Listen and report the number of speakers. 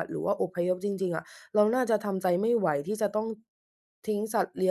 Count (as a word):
one